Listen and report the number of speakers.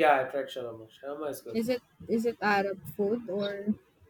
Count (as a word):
two